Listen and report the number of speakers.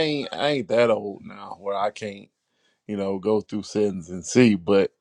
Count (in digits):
1